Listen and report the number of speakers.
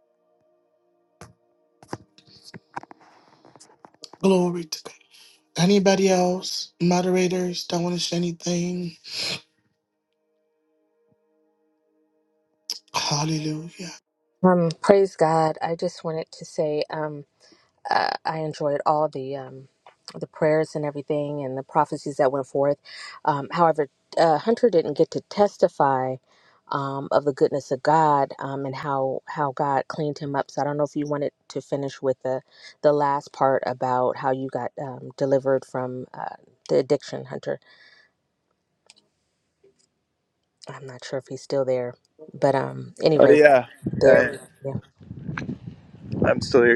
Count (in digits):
3